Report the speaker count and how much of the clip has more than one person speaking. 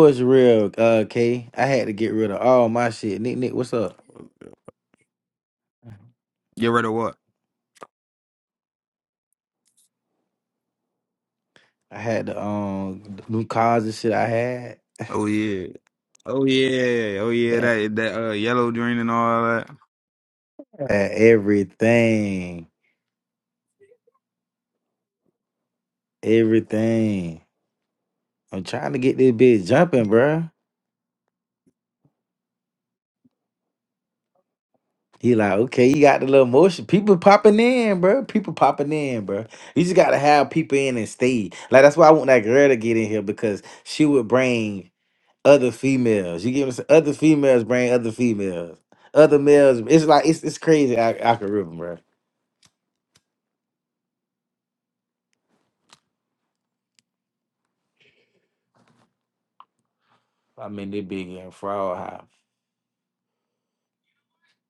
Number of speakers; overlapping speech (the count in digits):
2, under 1%